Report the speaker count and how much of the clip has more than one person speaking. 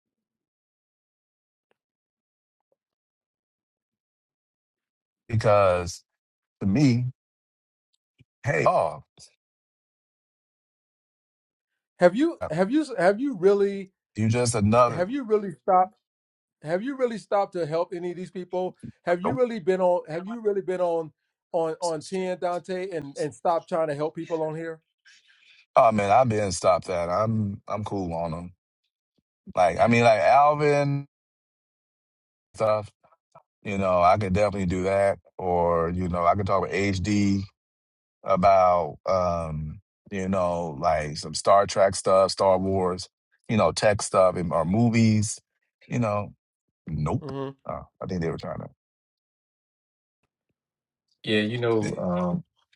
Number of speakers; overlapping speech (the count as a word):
three, about 1%